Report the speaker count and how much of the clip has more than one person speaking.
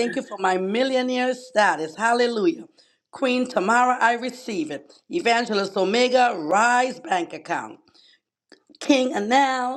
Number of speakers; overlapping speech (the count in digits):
1, no overlap